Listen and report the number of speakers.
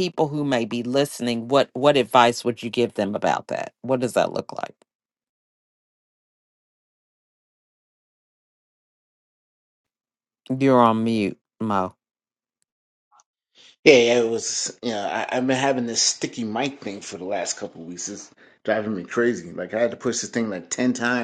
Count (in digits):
2